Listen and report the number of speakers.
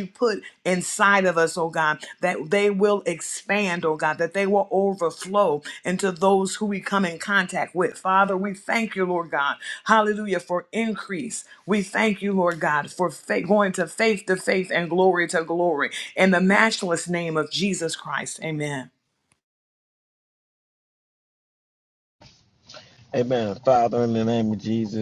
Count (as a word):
two